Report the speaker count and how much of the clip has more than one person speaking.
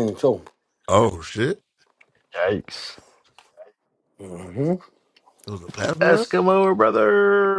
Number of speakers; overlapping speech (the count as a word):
three, about 3%